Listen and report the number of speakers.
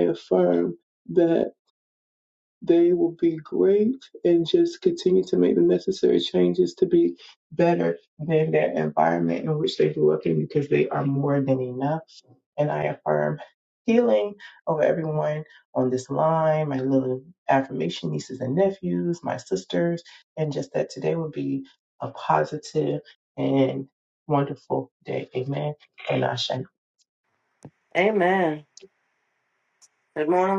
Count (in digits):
2